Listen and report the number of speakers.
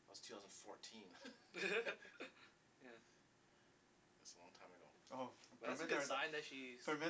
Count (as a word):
three